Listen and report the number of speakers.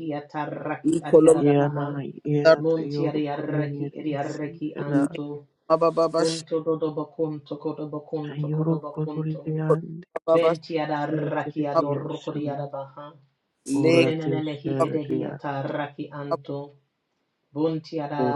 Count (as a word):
three